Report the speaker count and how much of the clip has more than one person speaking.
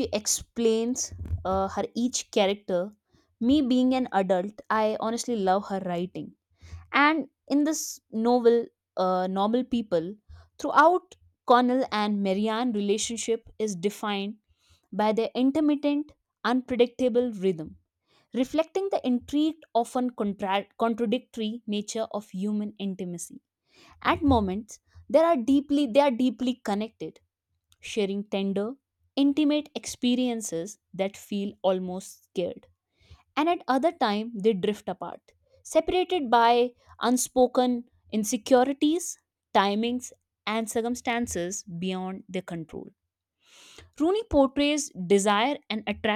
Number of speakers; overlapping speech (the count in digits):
1, no overlap